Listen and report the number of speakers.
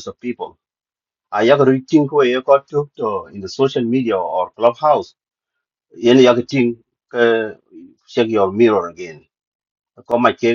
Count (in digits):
1